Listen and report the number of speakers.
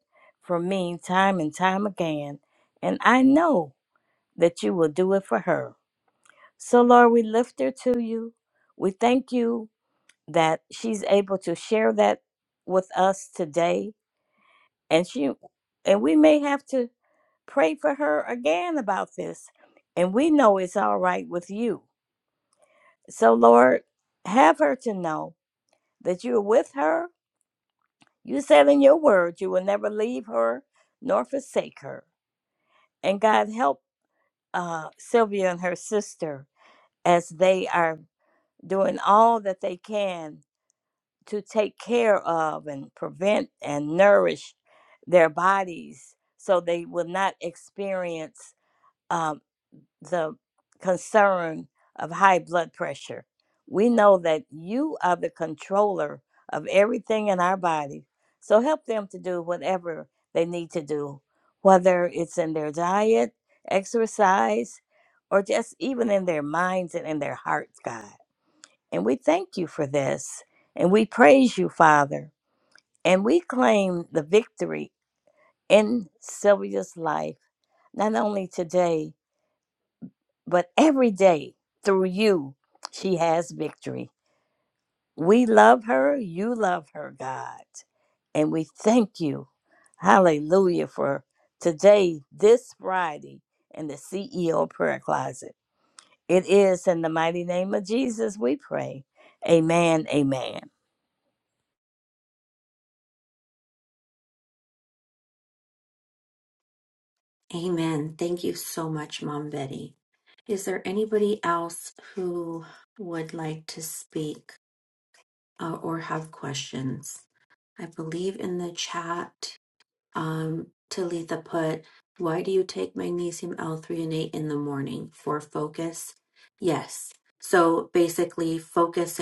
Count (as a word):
two